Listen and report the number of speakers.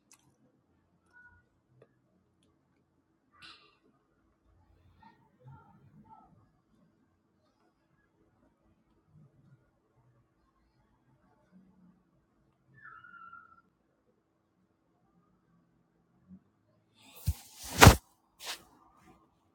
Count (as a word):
zero